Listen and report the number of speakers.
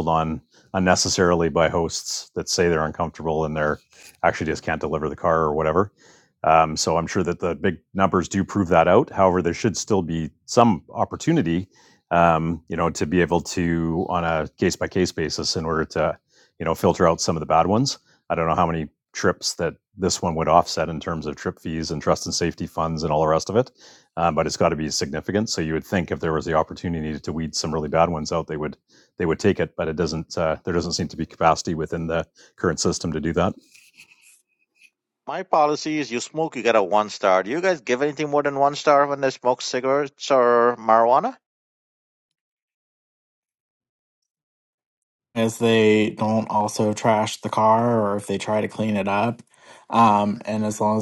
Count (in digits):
3